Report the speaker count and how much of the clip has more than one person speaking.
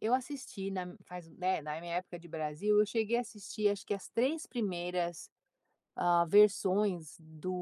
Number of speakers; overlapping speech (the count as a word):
one, no overlap